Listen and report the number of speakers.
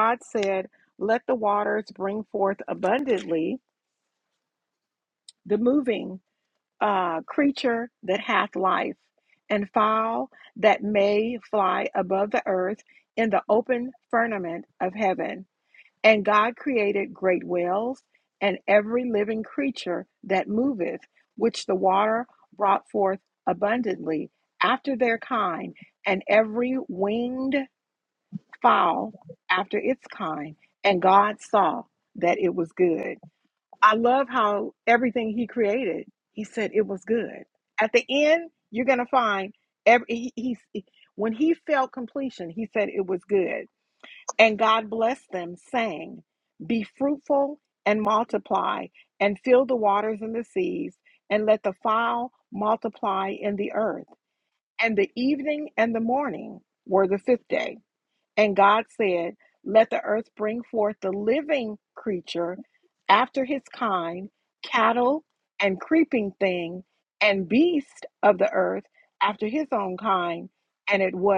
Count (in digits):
1